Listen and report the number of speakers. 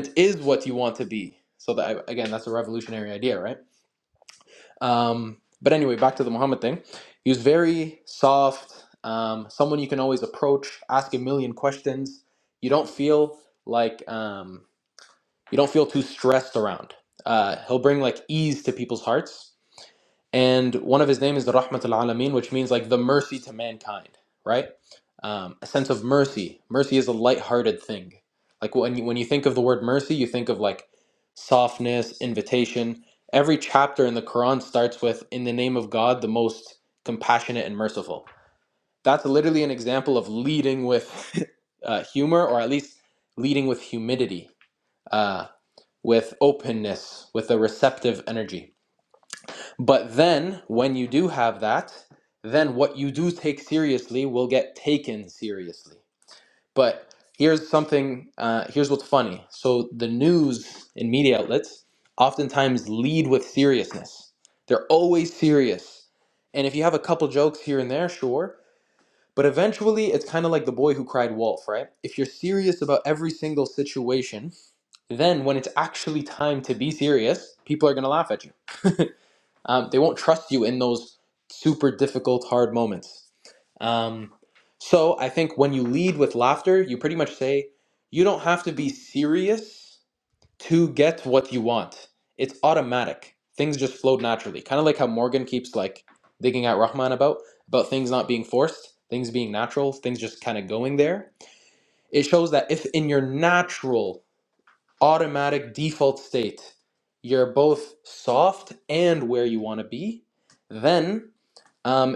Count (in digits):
1